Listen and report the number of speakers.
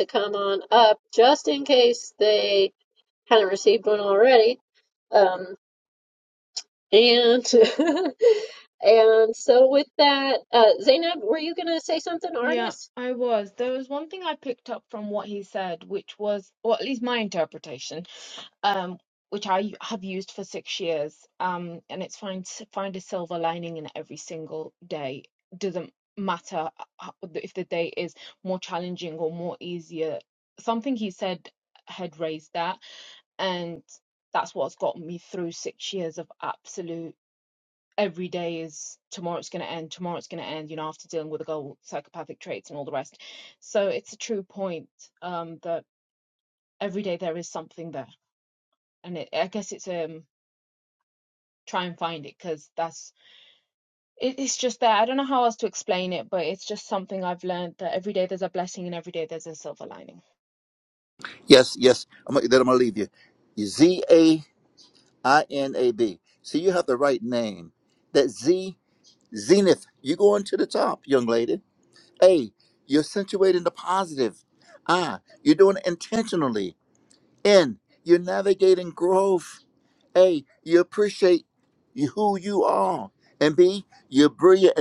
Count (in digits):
3